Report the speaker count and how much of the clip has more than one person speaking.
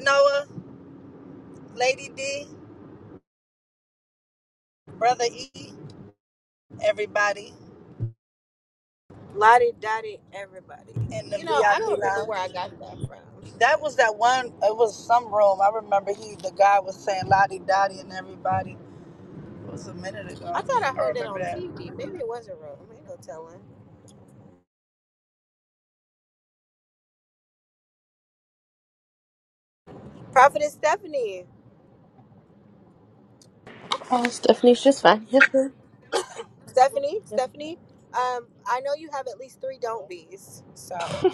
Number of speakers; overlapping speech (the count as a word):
three, about 7%